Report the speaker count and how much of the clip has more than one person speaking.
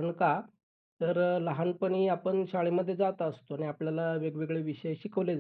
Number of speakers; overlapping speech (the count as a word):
one, no overlap